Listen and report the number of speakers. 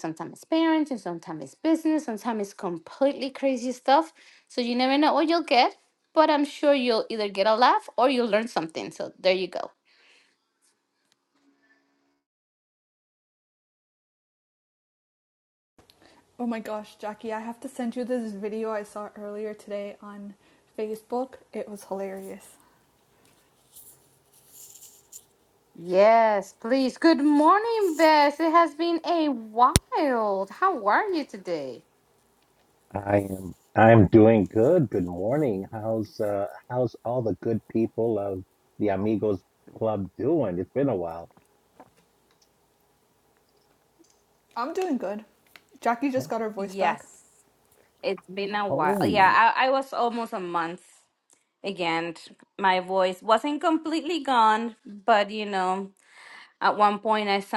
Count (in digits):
3